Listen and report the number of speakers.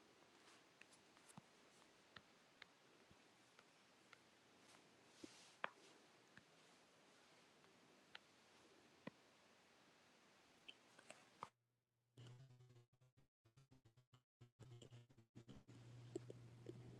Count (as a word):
zero